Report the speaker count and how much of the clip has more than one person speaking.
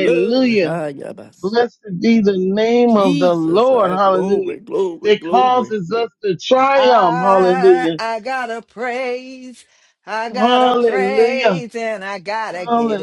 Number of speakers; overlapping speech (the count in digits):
3, about 44%